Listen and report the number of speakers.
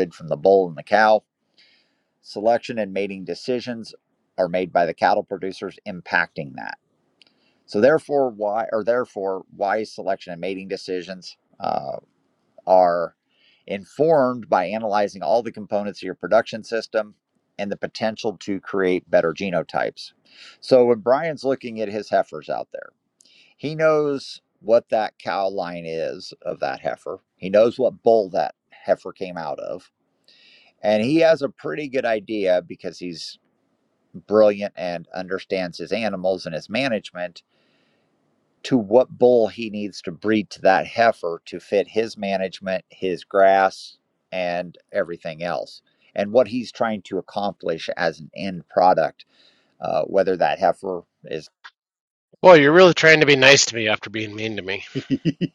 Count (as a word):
two